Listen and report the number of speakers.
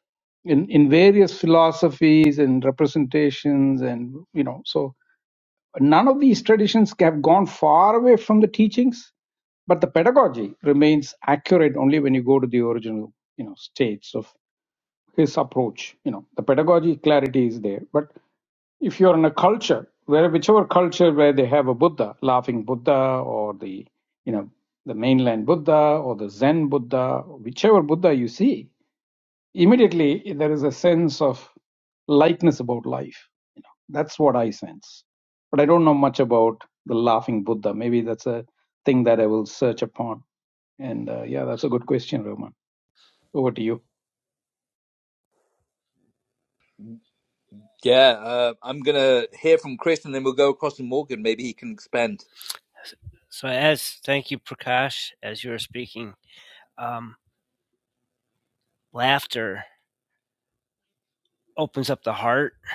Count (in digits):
3